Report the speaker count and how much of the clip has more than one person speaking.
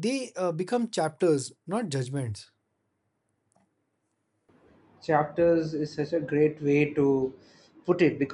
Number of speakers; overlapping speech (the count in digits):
2, no overlap